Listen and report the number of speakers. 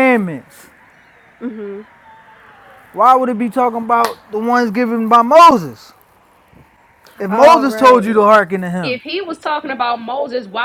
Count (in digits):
3